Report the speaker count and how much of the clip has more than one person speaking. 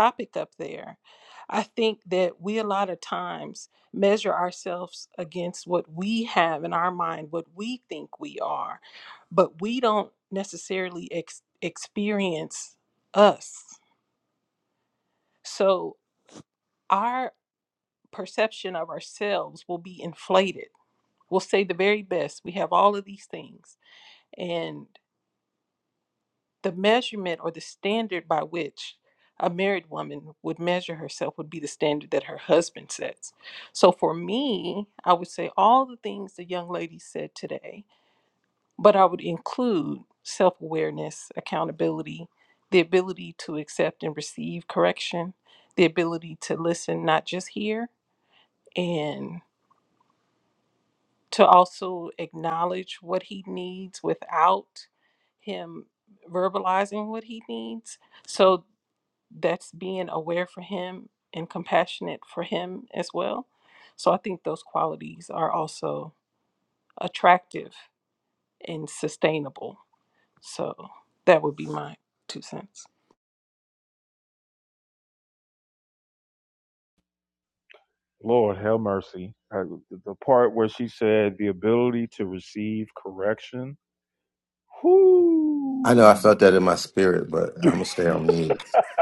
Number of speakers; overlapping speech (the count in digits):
3, no overlap